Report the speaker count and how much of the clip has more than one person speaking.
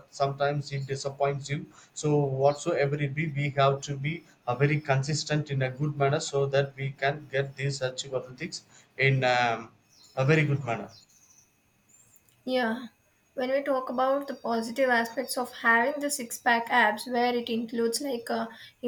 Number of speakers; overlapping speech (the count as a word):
two, no overlap